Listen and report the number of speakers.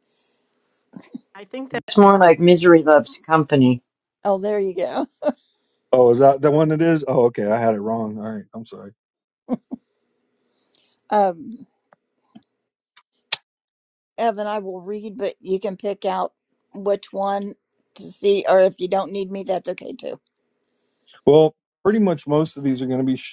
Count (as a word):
three